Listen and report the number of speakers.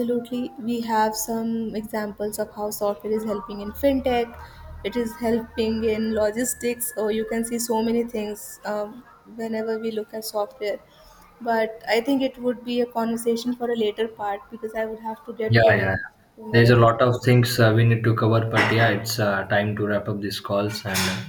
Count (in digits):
2